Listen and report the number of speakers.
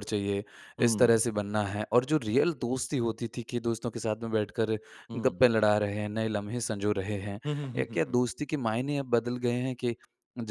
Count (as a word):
two